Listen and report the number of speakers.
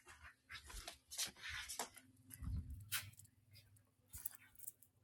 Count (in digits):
0